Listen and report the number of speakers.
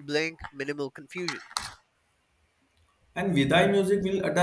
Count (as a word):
two